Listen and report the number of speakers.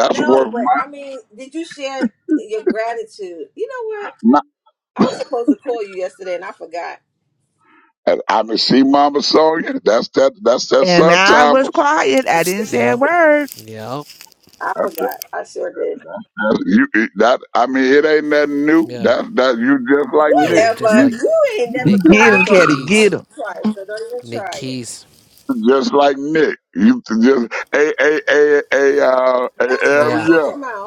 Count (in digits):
4